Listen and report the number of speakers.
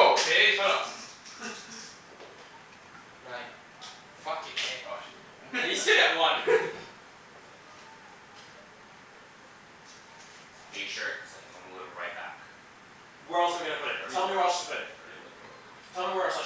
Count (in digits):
4